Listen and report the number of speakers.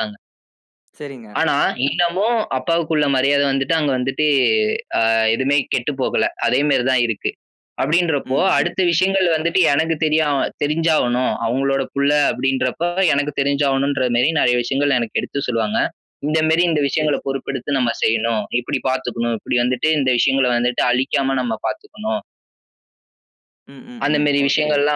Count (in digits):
2